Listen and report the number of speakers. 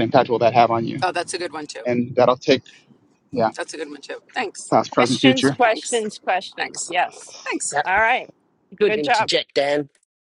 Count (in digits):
4